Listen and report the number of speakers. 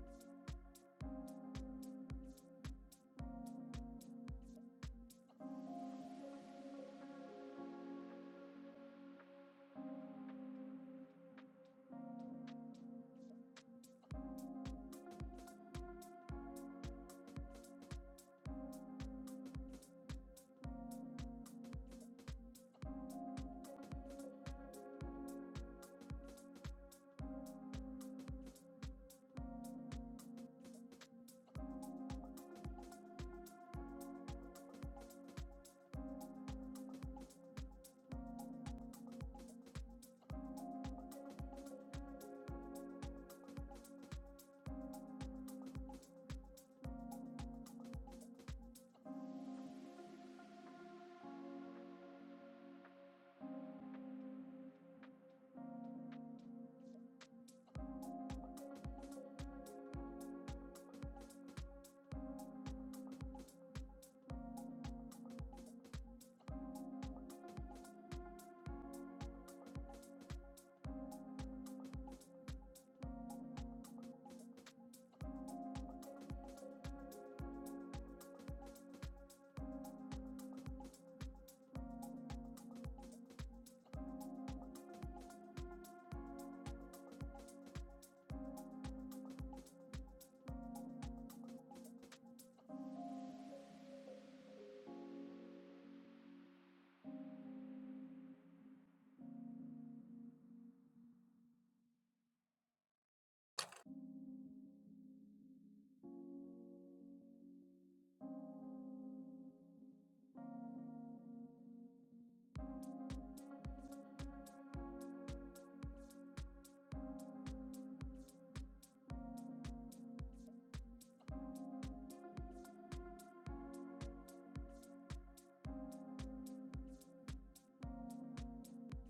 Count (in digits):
0